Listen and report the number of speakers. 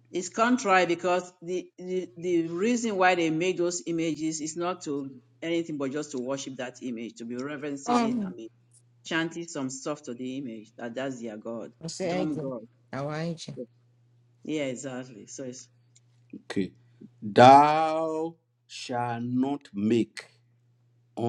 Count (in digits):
3